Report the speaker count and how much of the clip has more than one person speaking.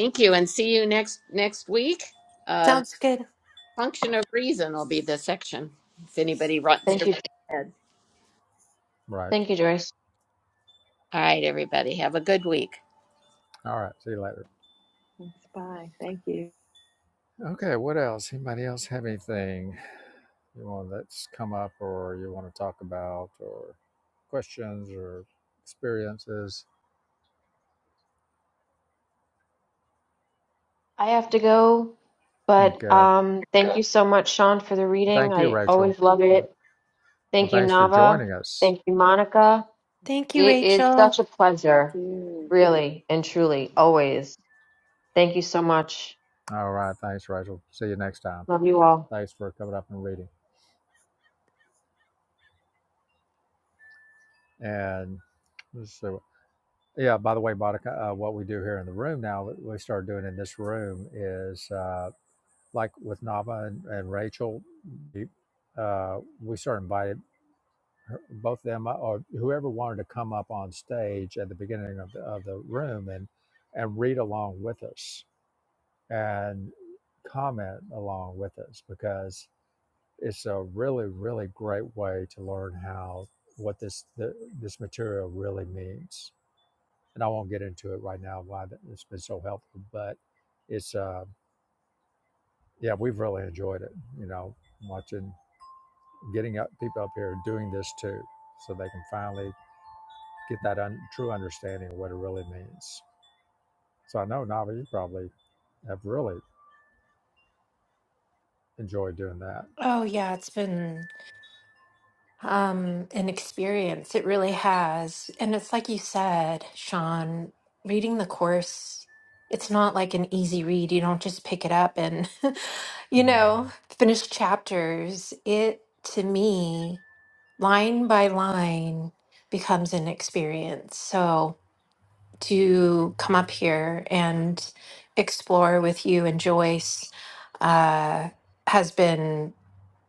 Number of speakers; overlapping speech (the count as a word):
five, about 3%